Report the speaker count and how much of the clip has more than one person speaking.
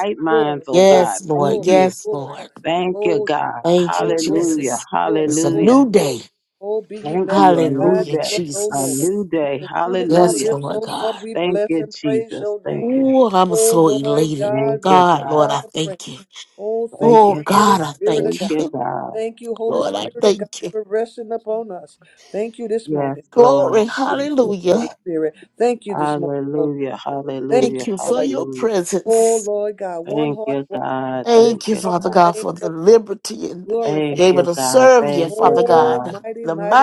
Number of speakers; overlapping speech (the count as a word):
three, about 67%